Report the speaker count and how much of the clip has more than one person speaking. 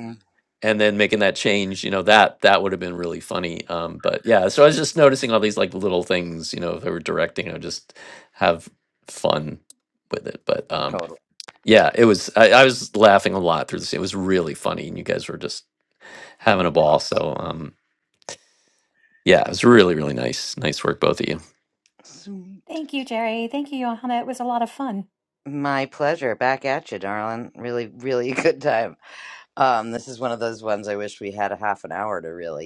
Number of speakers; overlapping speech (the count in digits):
3, under 1%